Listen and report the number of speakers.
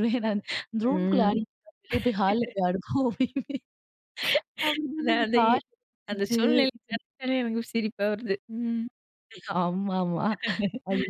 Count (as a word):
two